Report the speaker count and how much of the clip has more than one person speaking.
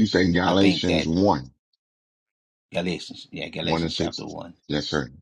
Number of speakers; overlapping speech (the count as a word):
two, about 22%